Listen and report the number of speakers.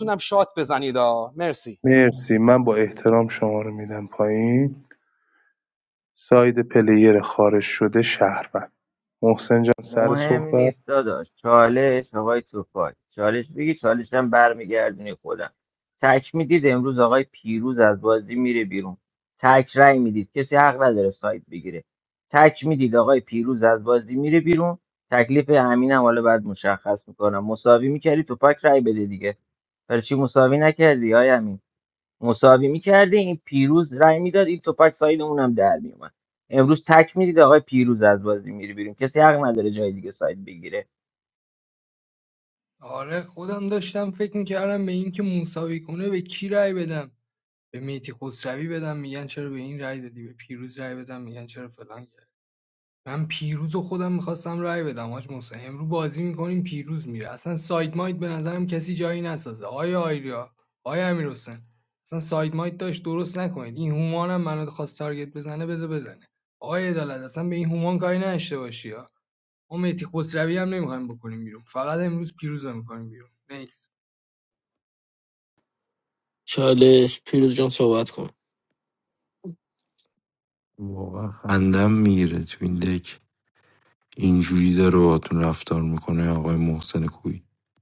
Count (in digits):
6